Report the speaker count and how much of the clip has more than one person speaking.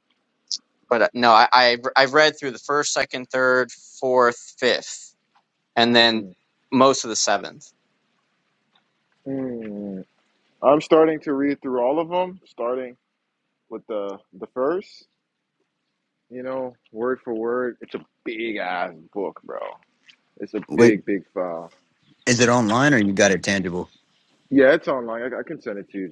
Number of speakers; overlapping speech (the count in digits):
3, about 2%